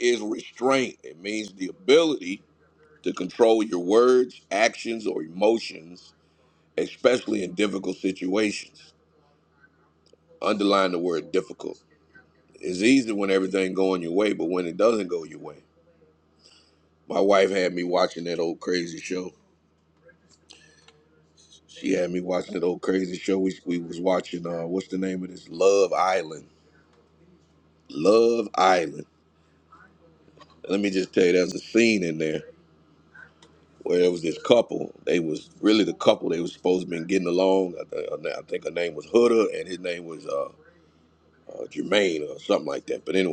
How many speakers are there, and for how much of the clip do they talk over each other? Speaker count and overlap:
1, no overlap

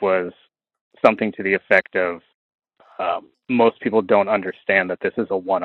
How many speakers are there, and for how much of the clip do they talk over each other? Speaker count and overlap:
1, no overlap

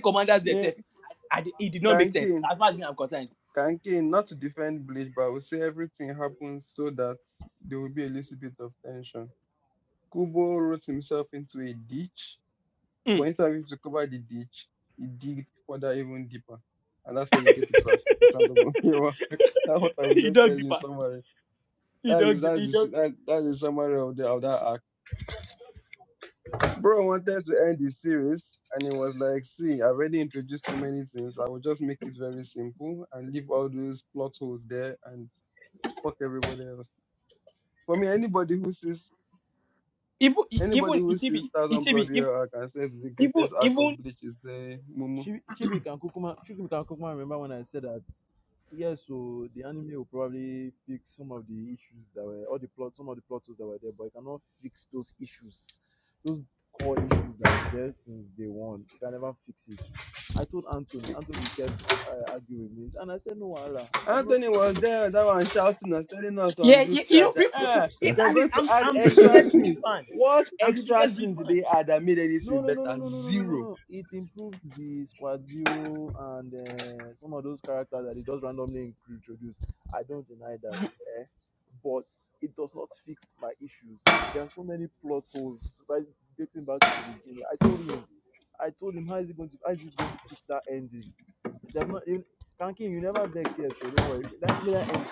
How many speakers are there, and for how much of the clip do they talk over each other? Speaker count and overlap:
3, about 11%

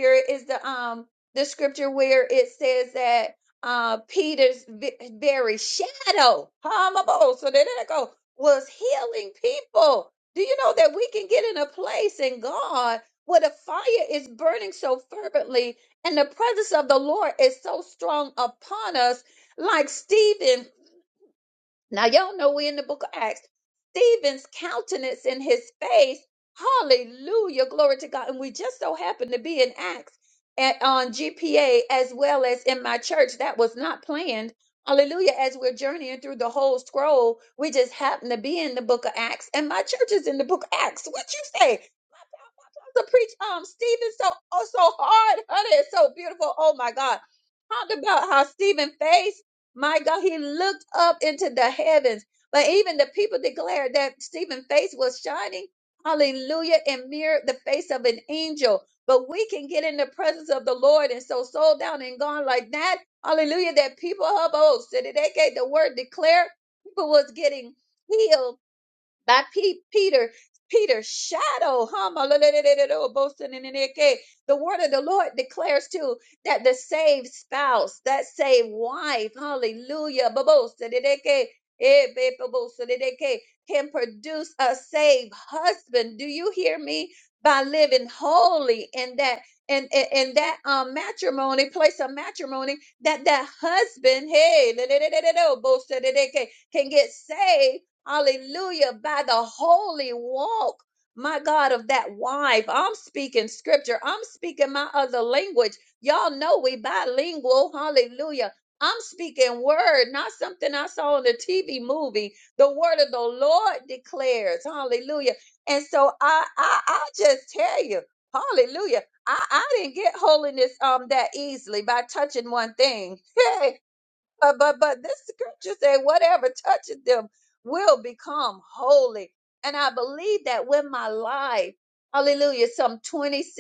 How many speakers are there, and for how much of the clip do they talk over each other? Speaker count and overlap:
1, no overlap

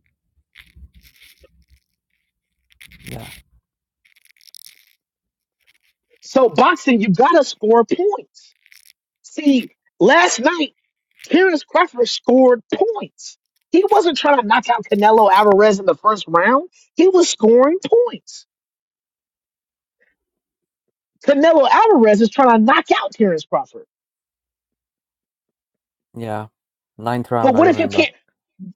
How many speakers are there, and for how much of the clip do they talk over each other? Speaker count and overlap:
2, about 2%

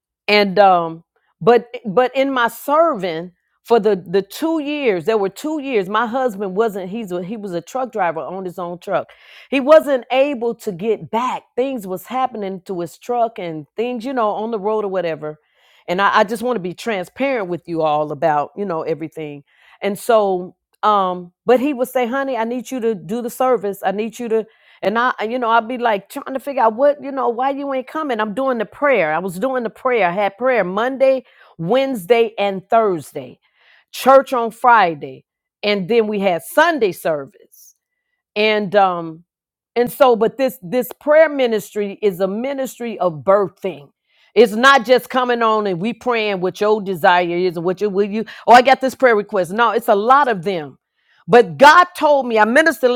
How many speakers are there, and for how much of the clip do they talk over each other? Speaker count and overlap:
1, no overlap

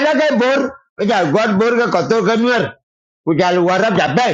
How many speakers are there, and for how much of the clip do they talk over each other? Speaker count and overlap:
1, no overlap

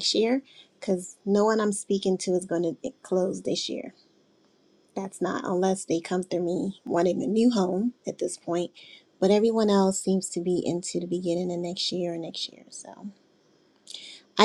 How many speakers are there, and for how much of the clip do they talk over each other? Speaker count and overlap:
1, no overlap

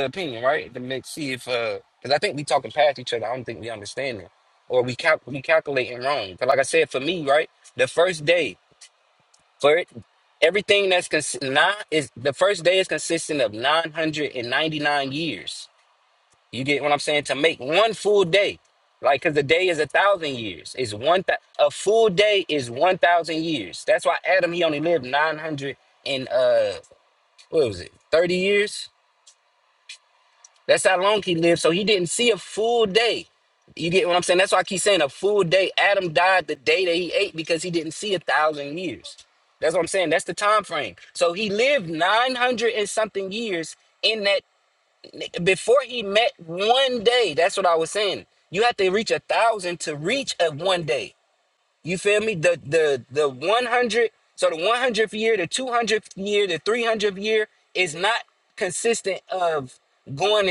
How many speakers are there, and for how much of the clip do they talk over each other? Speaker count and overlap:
1, no overlap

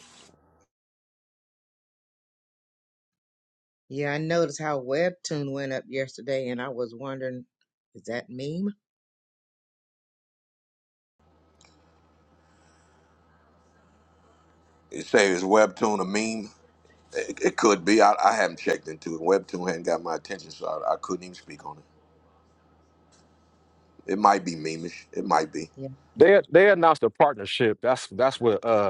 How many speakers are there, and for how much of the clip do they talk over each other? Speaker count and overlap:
3, no overlap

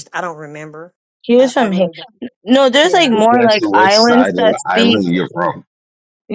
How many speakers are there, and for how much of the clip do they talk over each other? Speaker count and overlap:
3, about 42%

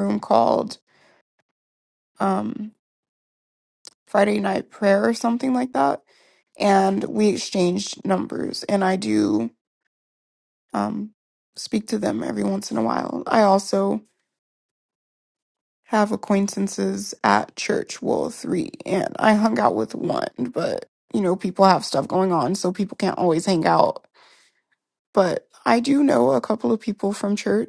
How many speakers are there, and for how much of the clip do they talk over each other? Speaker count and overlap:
1, no overlap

